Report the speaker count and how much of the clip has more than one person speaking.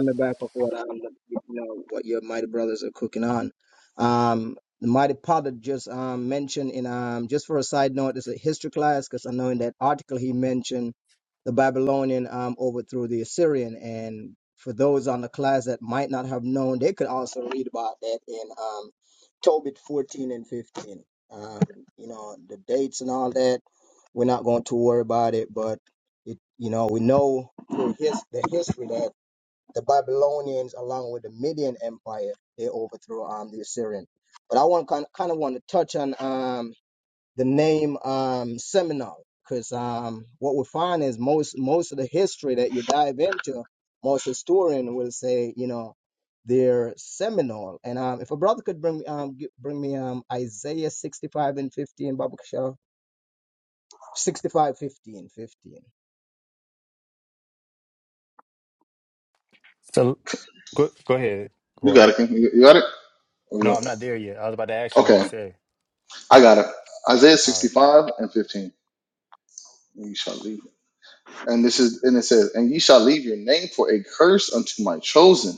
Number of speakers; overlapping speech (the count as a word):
three, about 1%